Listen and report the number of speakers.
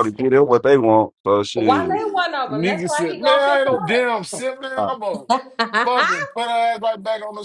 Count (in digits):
3